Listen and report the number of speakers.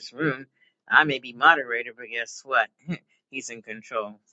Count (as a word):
one